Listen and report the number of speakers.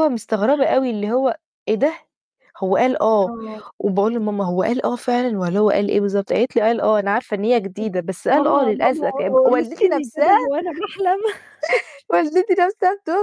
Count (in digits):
2